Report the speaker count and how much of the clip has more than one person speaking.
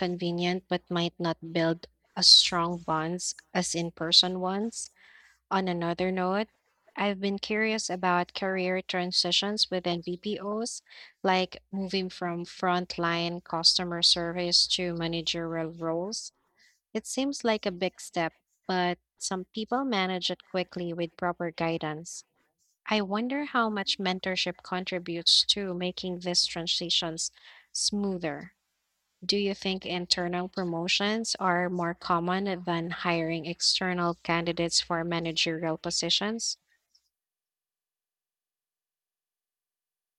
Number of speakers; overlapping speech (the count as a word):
one, no overlap